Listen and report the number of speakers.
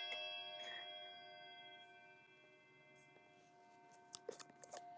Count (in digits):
0